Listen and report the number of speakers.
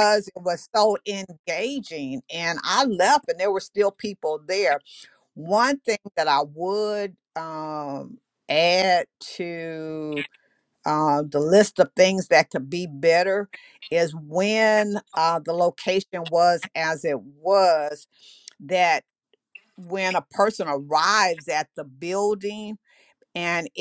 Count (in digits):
1